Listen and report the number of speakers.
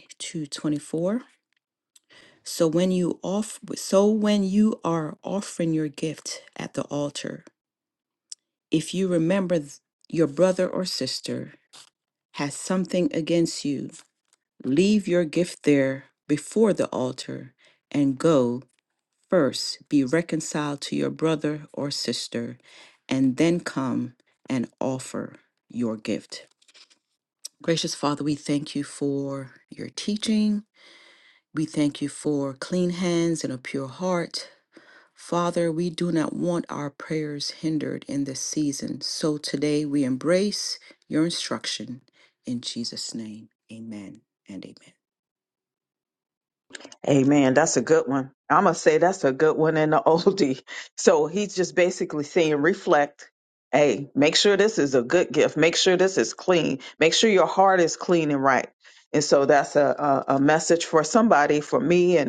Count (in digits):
2